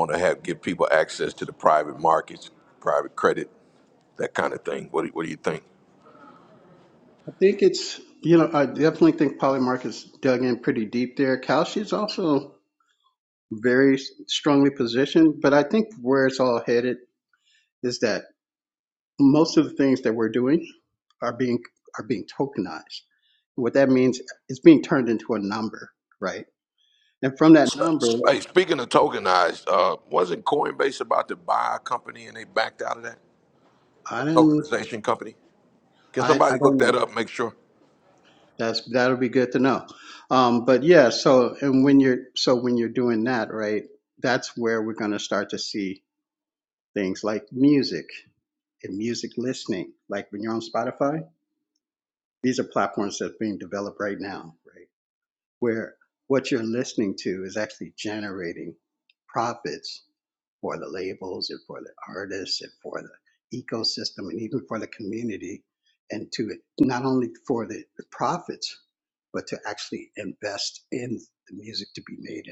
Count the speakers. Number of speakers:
2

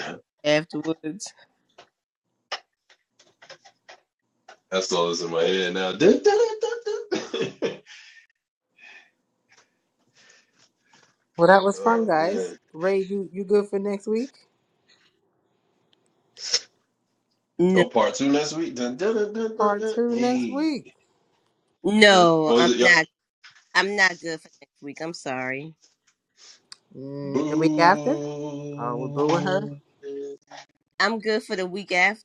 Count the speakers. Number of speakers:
3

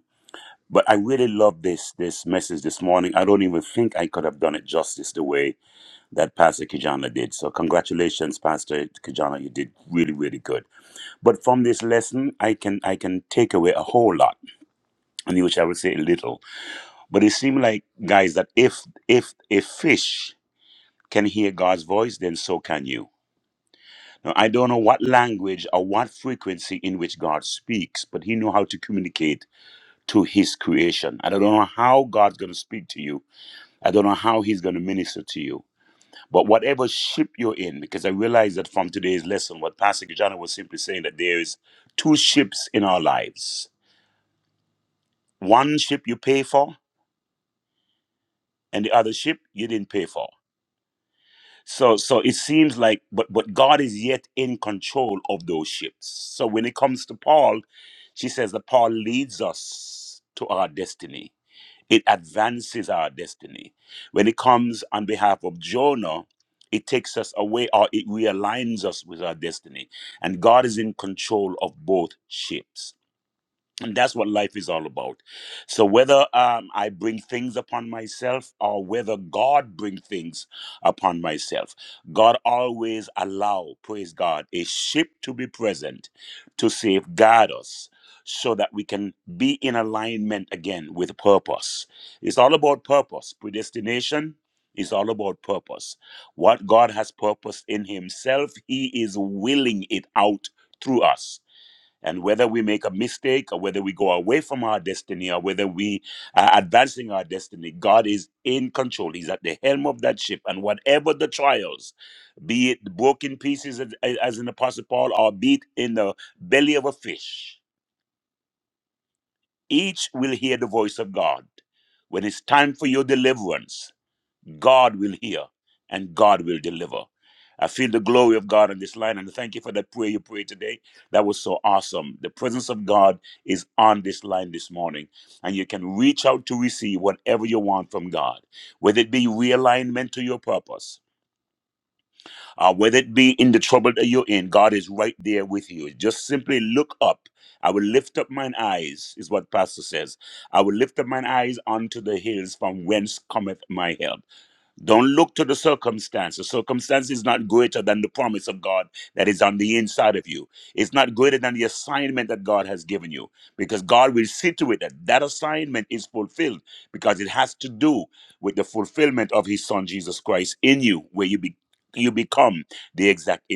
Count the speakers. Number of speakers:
1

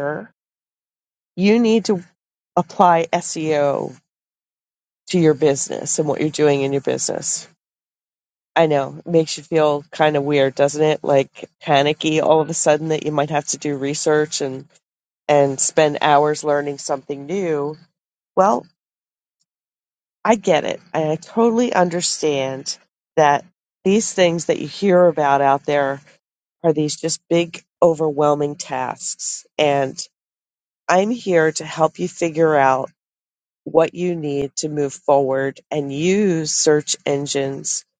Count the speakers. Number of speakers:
1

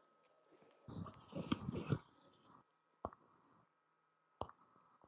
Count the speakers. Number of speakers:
0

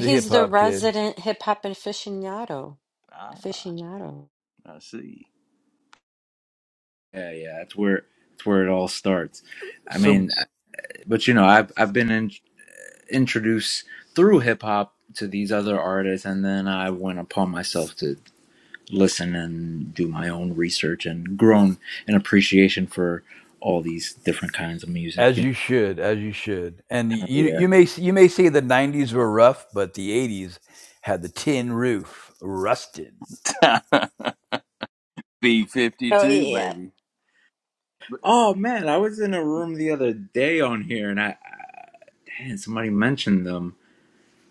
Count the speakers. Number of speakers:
4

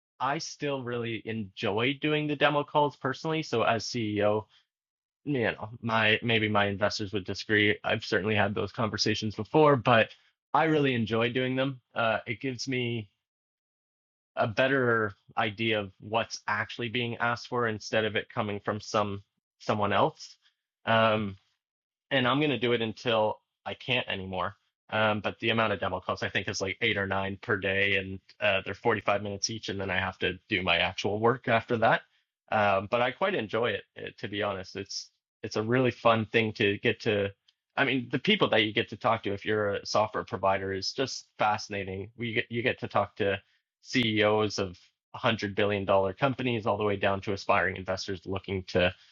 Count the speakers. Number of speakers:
1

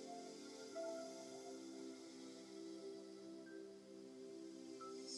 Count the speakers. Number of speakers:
0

